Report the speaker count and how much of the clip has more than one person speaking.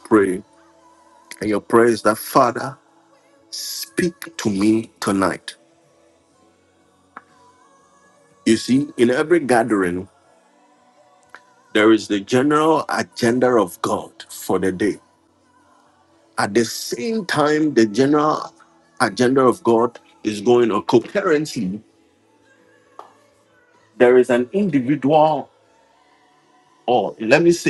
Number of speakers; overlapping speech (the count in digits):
1, no overlap